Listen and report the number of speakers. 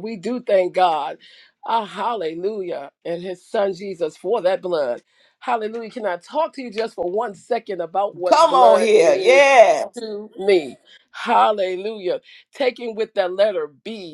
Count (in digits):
2